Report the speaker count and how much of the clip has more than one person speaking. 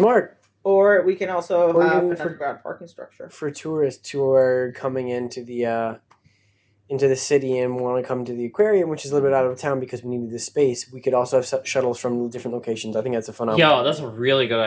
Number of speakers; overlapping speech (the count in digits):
3, about 10%